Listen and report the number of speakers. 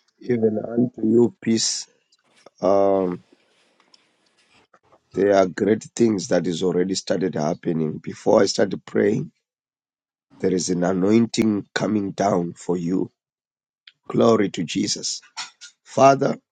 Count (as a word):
one